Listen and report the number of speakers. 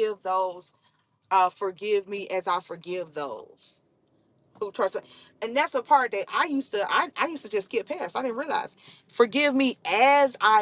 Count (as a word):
one